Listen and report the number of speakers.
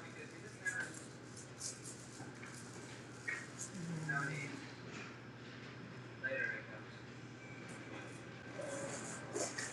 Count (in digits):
0